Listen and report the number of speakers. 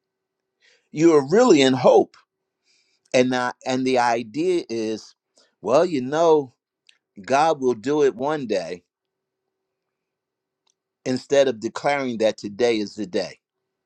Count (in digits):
1